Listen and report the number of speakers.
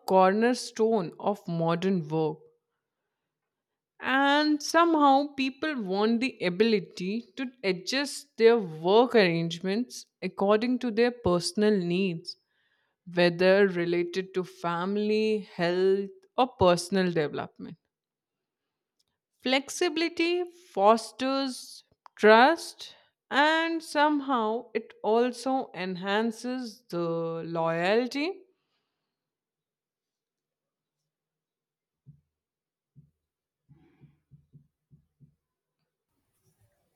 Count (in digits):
1